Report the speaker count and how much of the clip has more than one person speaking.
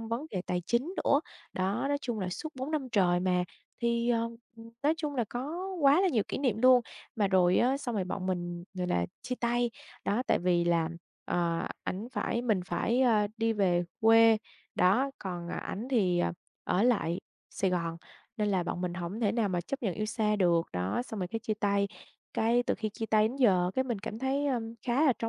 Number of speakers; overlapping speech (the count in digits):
1, no overlap